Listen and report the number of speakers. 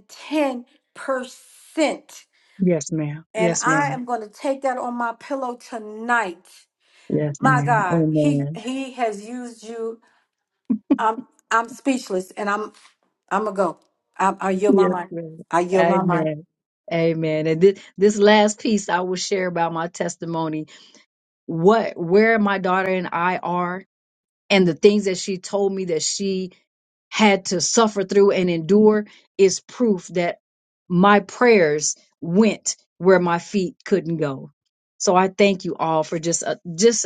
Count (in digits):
2